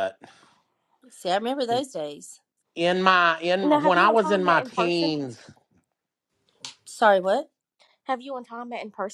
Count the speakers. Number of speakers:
3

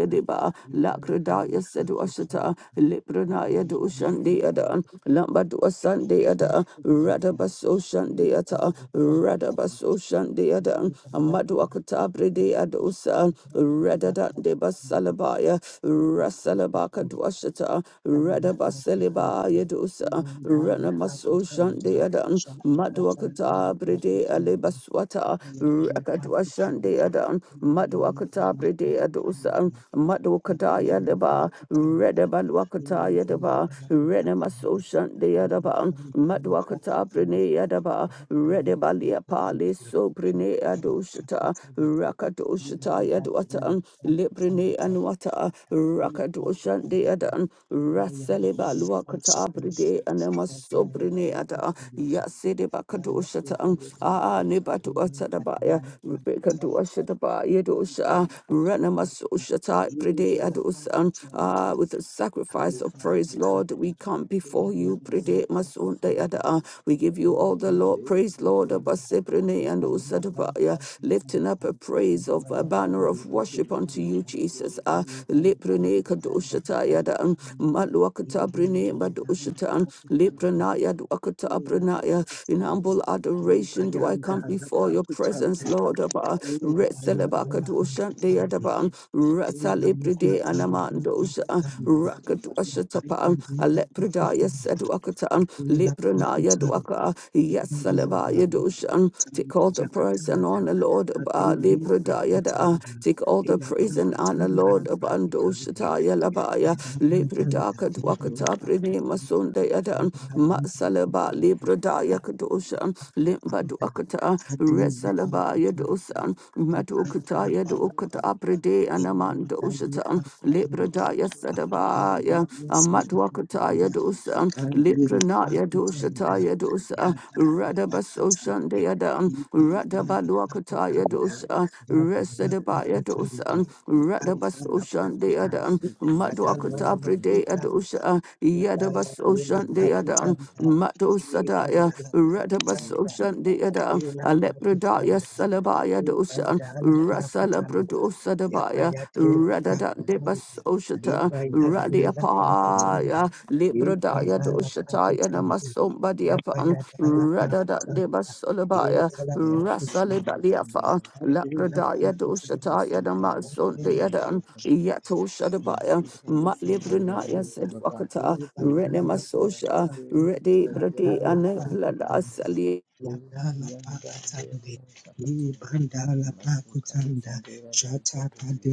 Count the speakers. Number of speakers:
3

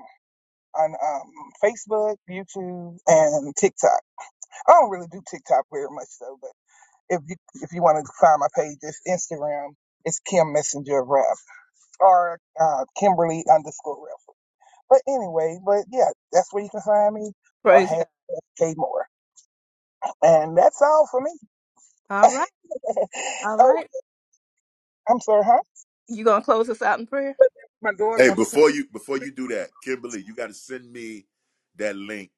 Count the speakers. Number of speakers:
3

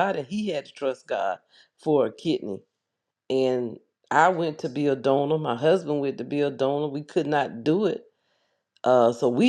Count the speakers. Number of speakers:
1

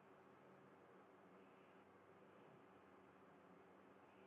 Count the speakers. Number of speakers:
0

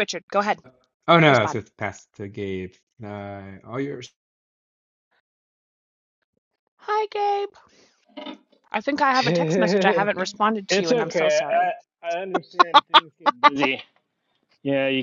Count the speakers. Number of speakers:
3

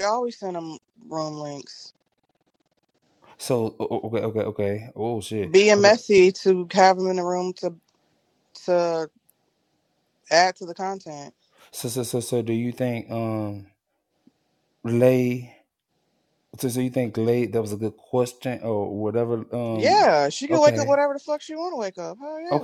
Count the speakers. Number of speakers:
2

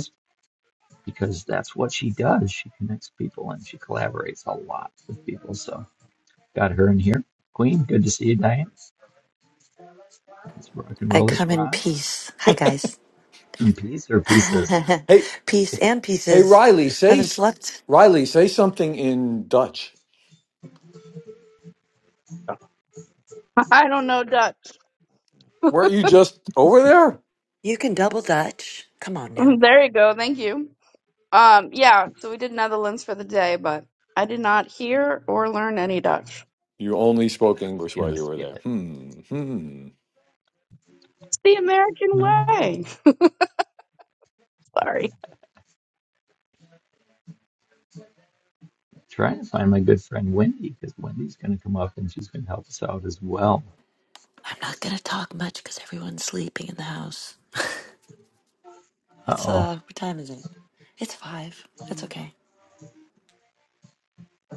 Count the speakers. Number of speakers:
4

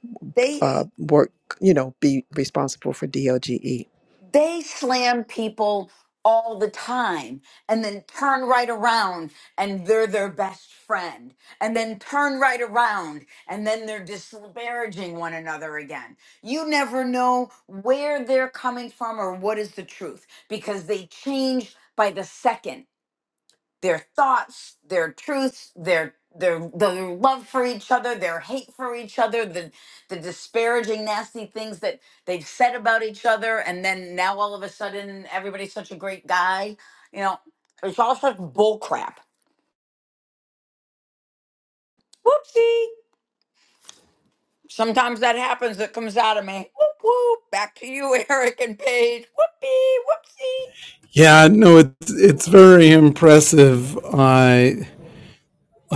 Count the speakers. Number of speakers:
3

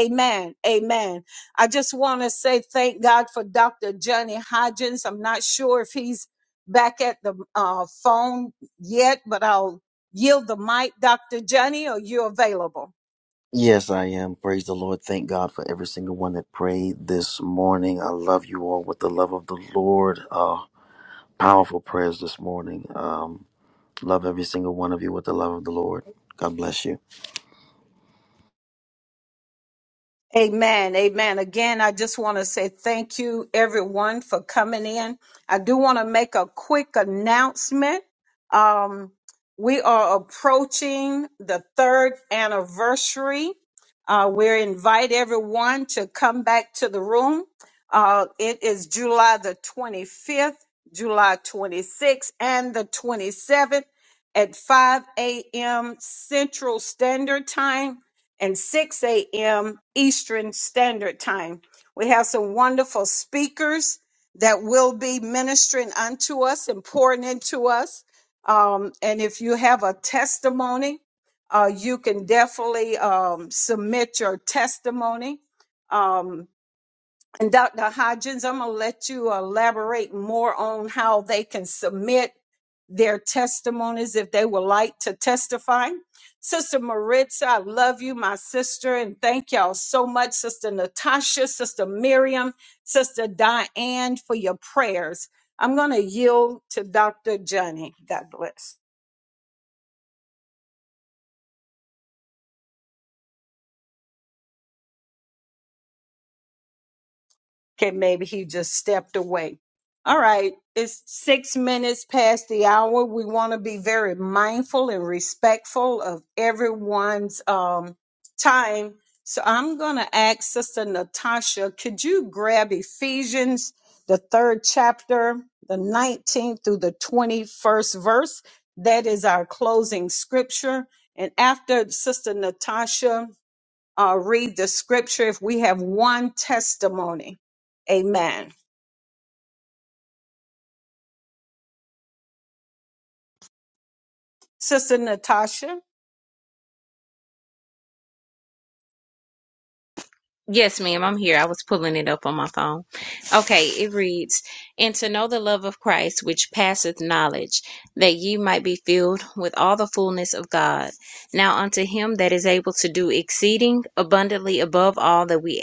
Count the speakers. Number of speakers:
3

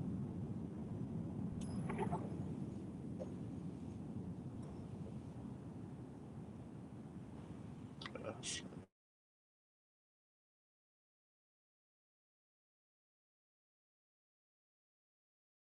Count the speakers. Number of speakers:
0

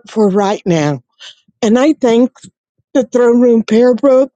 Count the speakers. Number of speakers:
1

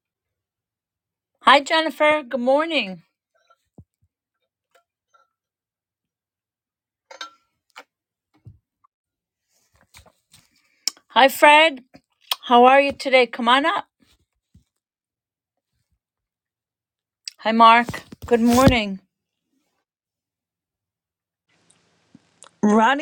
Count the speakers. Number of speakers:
1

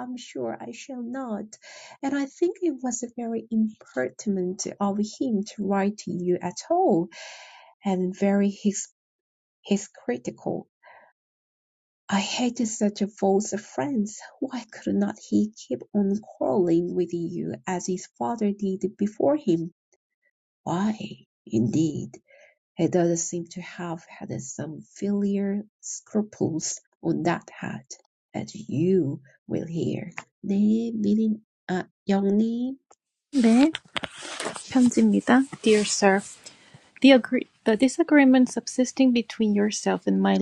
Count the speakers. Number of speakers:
2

